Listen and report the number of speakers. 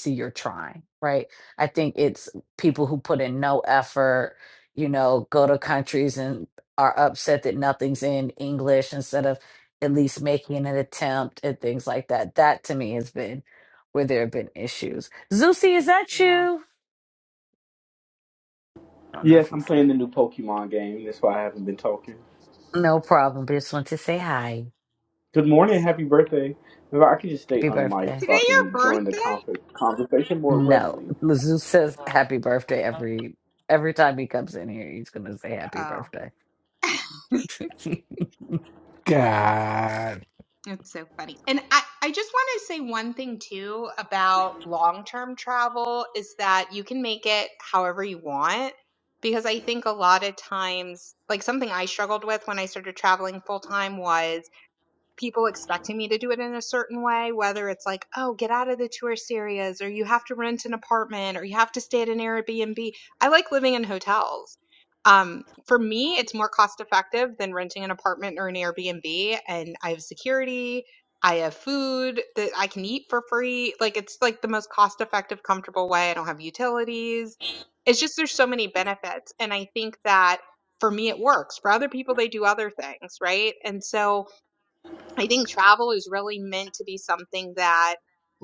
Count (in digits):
4